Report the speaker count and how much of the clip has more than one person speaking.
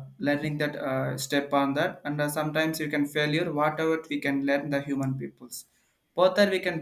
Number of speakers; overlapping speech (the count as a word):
one, no overlap